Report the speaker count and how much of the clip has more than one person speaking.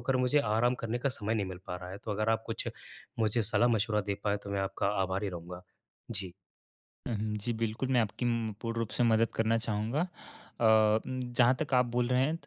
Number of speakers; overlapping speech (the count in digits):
2, no overlap